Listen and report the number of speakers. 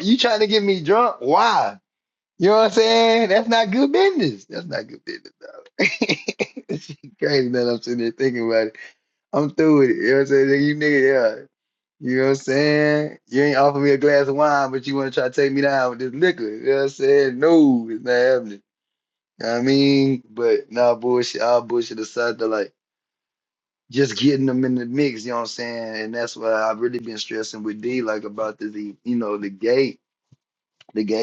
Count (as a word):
one